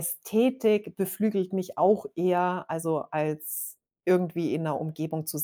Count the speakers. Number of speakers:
one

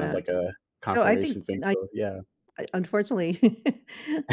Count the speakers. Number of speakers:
two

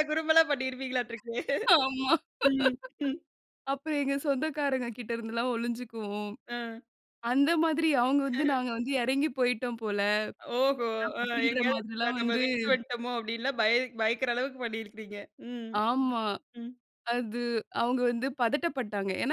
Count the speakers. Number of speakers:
two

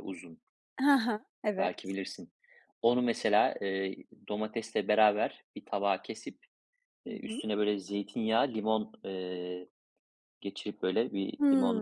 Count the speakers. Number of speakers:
two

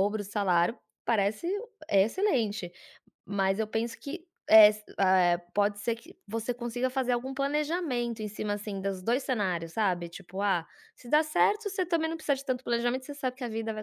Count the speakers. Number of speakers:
one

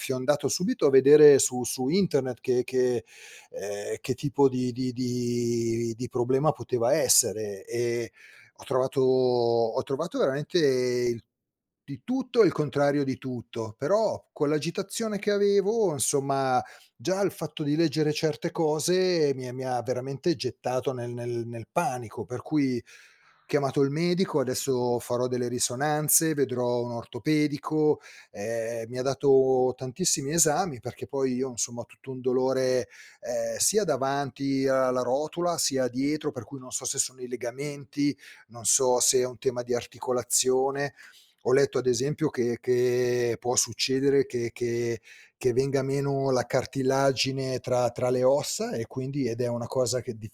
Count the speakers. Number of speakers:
one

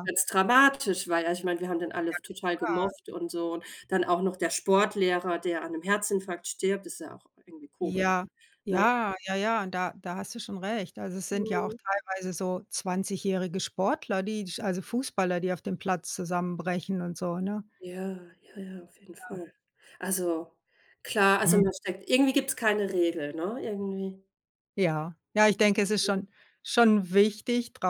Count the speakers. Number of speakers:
two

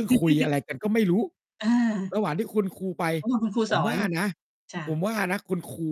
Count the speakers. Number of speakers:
two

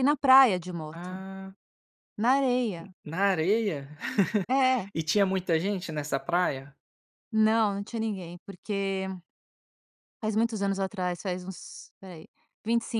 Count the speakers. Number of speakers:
two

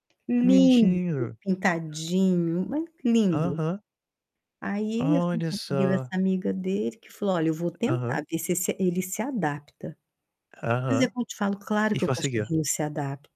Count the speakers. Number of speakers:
two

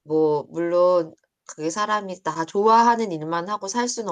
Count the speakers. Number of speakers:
one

